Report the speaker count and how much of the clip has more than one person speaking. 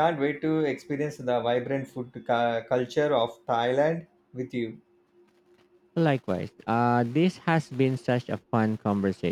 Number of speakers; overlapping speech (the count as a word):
two, no overlap